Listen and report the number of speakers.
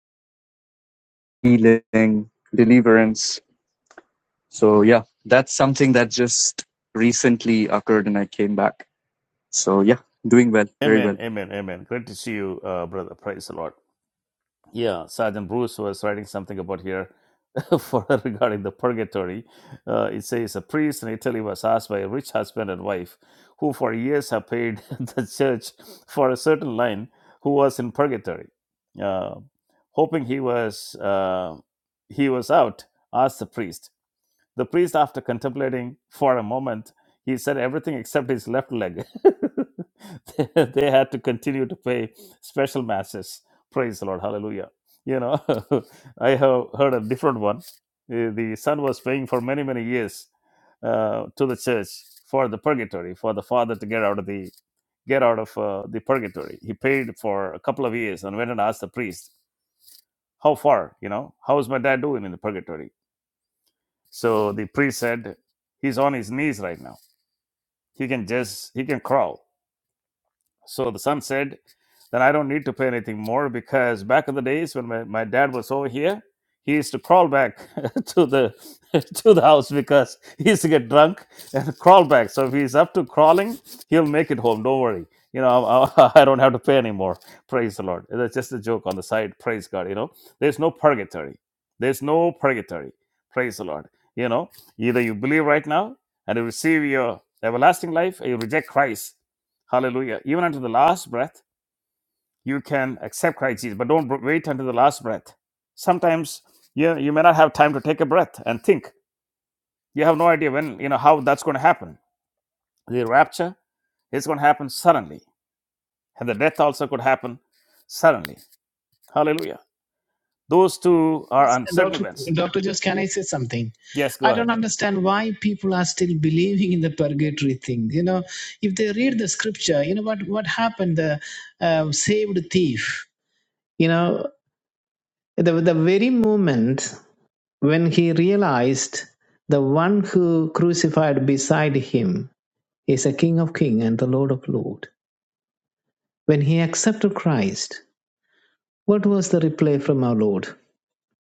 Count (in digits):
3